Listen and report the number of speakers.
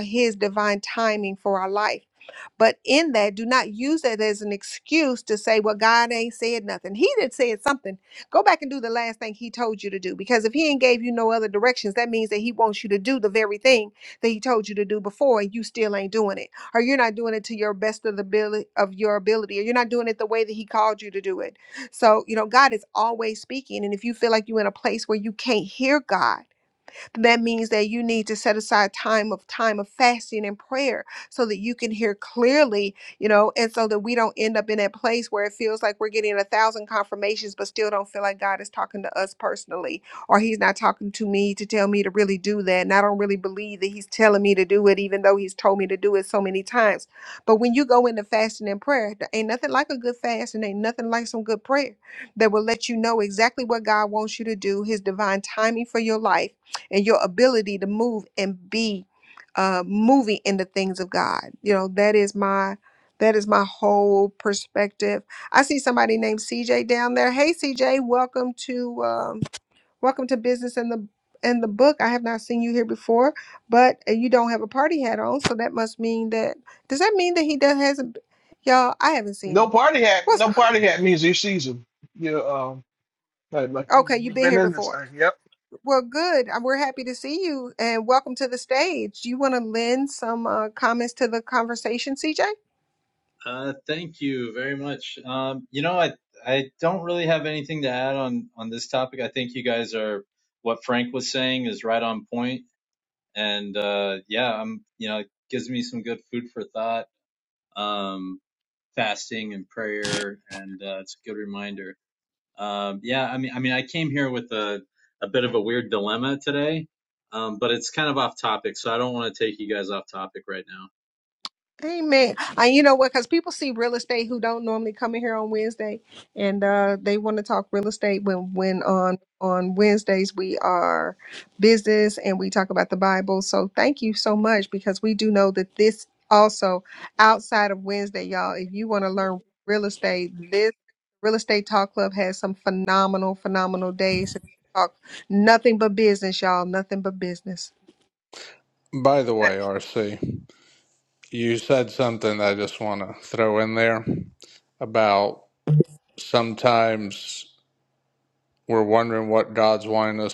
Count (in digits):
4